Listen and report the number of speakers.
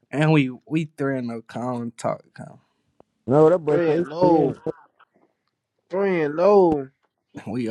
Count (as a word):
three